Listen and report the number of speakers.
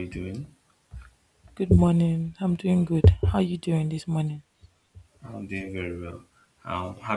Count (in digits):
2